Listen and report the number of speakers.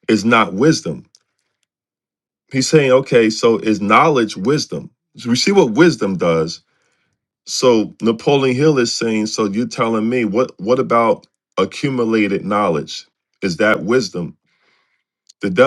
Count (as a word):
one